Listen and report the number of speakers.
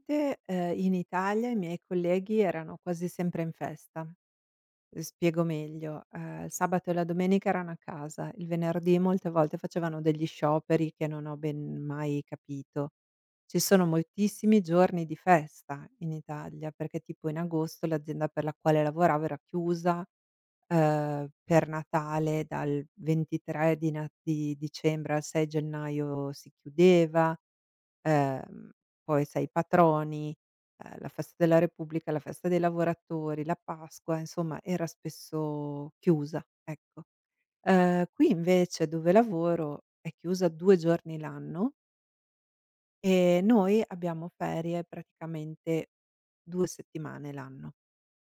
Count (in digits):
1